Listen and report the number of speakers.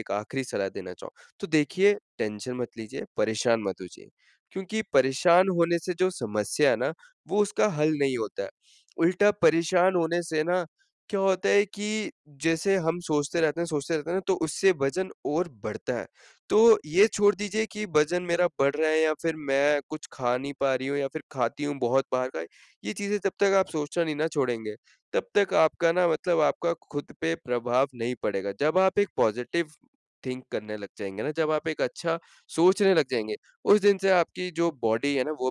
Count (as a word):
one